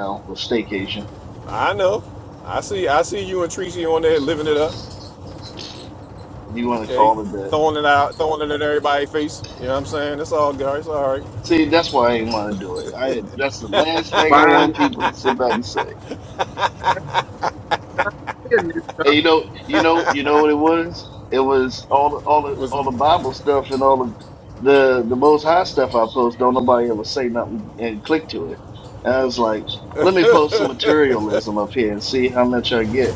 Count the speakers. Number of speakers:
three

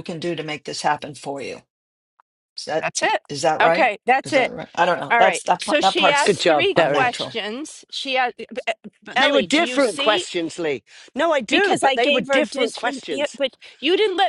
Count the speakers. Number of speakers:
three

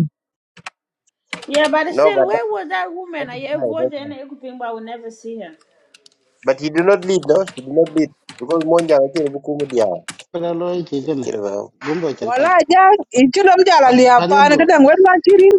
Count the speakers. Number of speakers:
four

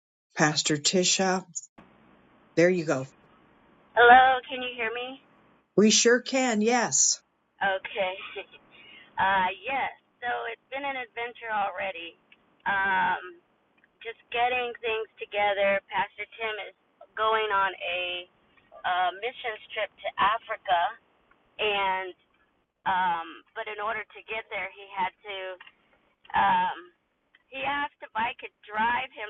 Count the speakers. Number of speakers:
two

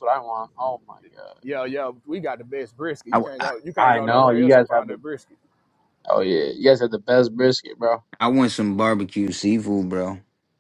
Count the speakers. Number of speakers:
three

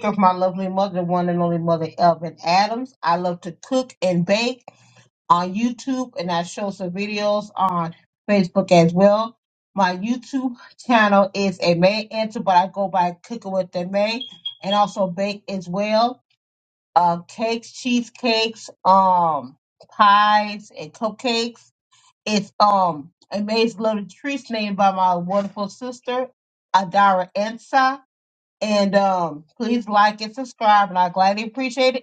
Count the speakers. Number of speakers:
one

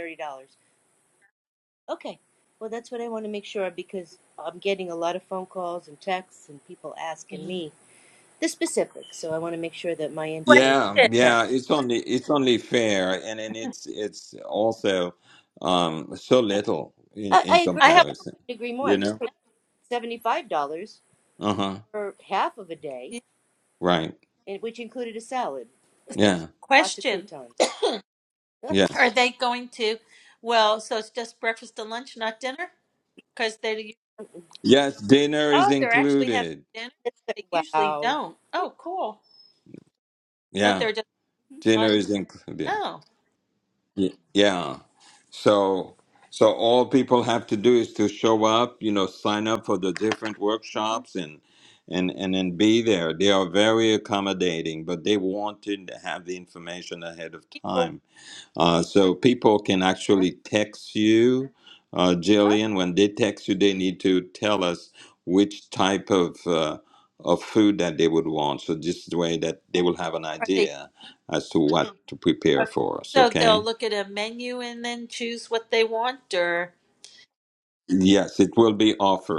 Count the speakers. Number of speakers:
three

